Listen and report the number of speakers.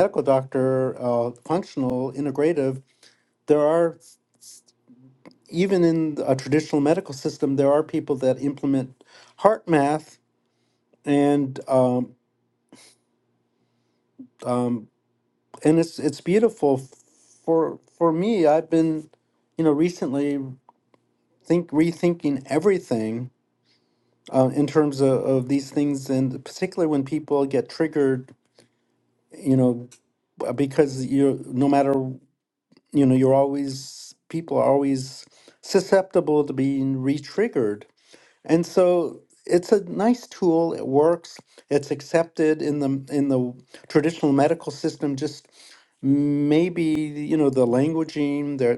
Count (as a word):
one